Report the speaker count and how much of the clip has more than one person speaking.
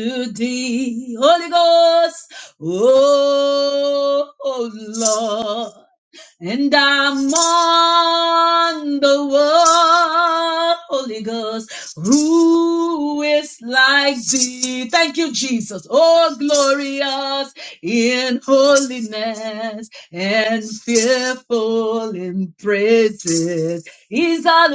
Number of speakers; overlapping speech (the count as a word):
one, no overlap